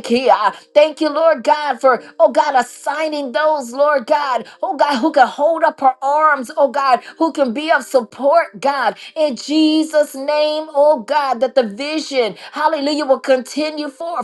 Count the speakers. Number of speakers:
one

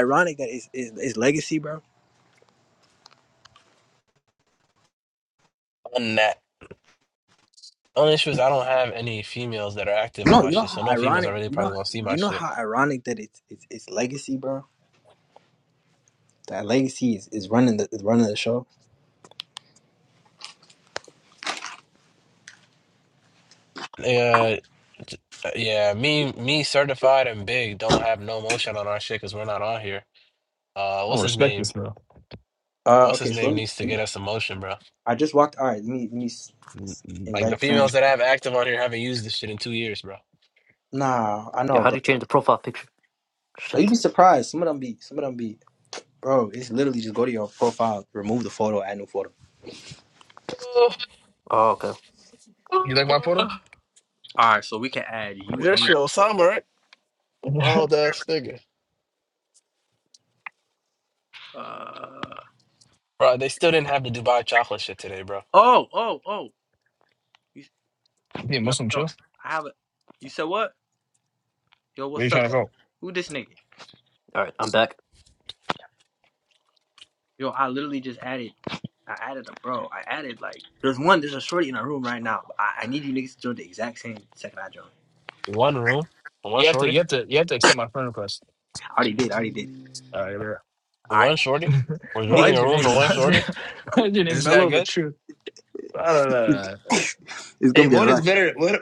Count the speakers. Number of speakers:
four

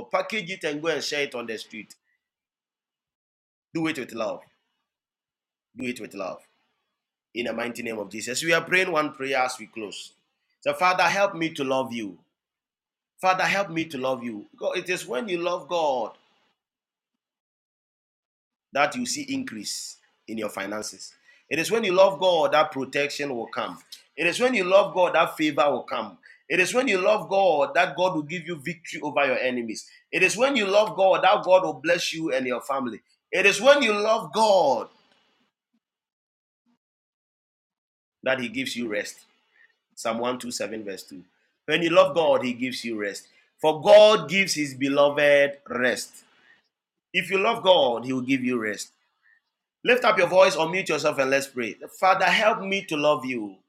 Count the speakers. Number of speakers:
one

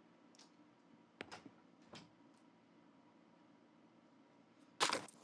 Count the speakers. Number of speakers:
zero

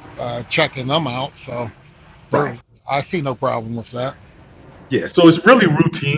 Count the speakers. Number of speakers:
two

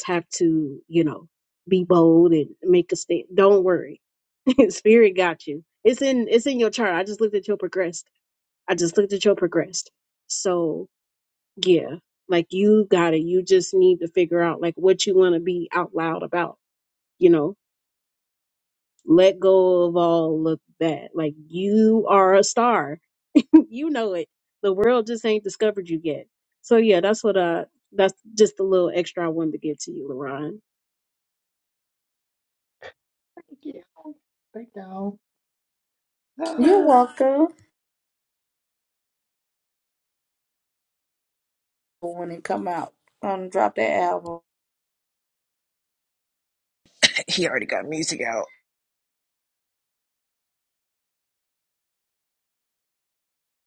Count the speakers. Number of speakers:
four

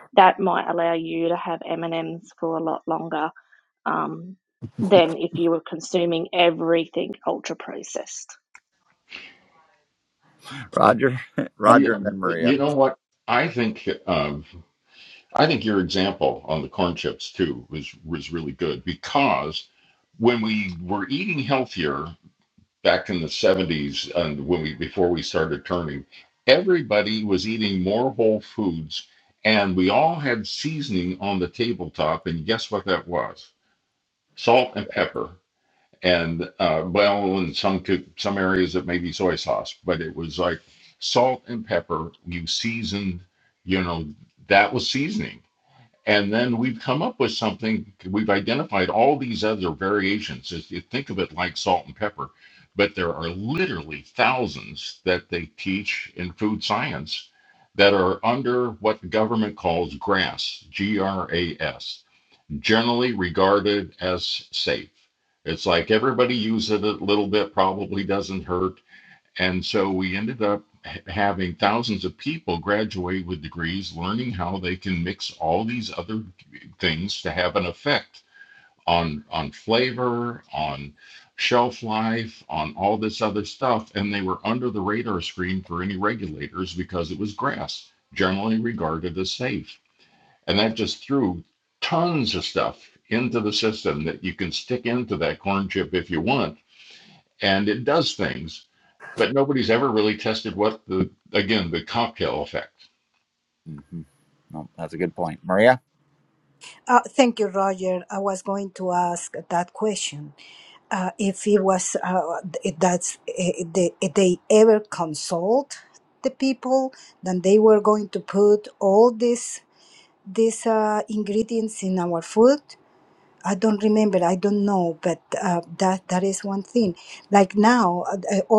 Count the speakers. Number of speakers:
four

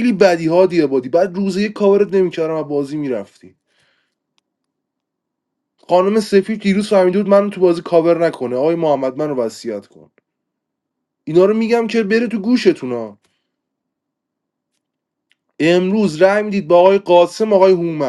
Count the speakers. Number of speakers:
one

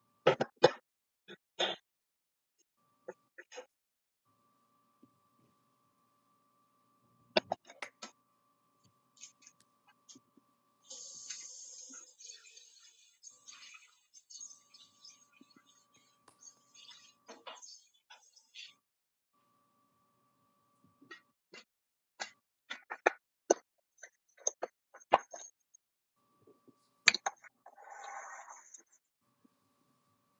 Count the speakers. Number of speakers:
zero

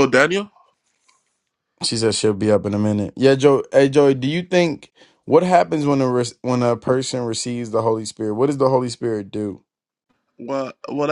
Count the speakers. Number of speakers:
two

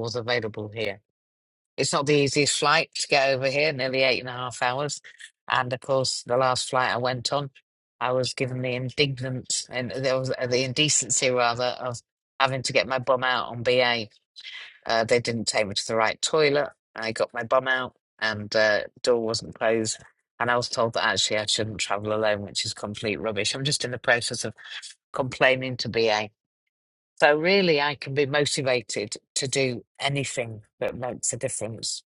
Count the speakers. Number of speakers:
one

